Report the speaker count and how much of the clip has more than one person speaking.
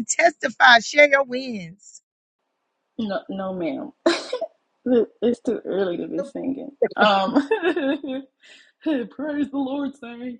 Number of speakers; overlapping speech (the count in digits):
2, about 1%